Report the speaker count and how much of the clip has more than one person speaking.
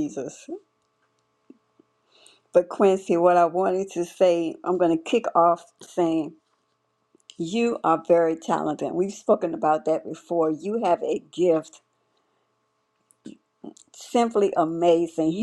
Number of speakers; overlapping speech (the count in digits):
1, no overlap